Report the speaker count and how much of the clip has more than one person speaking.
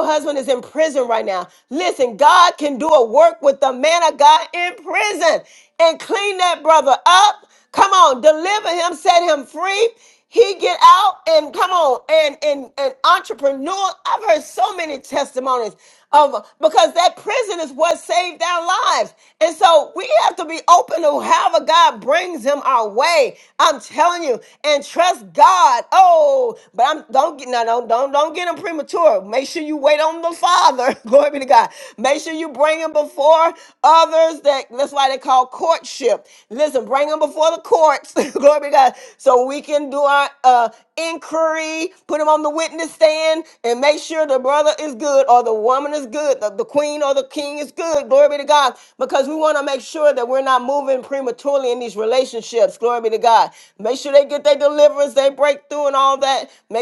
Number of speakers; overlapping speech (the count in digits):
1, no overlap